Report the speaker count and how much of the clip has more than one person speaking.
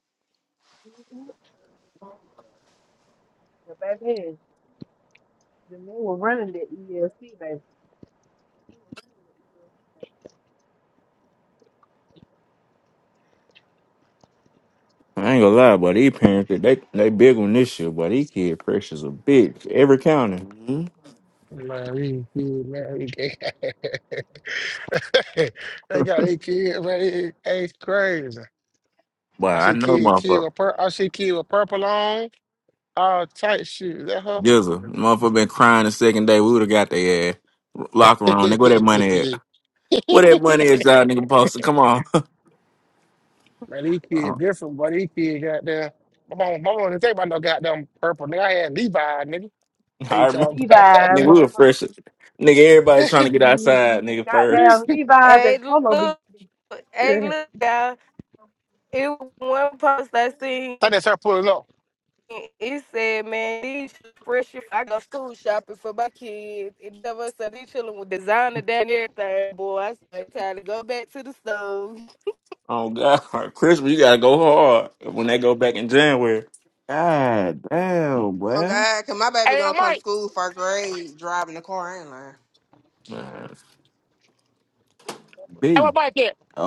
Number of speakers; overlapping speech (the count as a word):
six, about 6%